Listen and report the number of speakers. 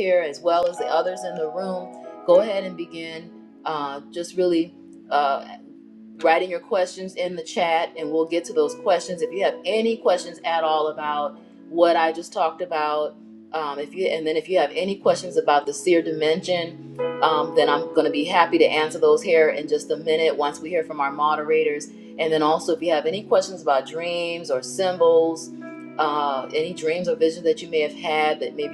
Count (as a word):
one